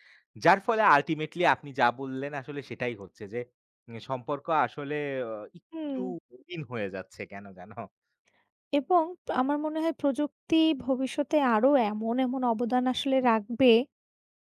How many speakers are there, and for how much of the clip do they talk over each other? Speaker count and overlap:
2, about 1%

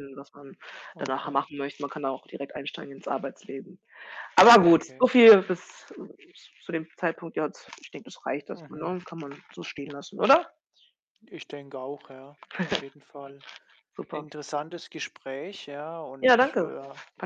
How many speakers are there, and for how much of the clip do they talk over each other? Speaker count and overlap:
2, about 11%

